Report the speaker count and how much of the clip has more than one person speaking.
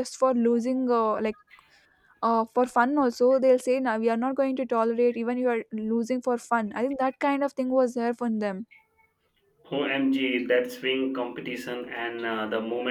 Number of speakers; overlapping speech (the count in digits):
2, no overlap